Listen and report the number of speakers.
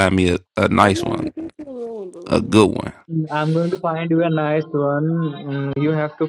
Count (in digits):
3